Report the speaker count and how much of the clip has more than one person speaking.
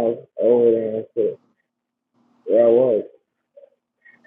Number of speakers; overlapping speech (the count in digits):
1, no overlap